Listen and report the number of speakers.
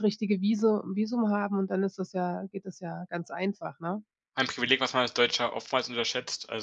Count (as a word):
two